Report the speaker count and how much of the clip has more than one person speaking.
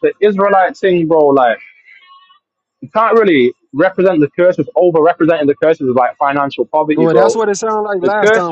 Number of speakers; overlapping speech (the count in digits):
2, about 12%